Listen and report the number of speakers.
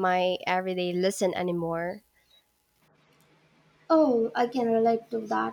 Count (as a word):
two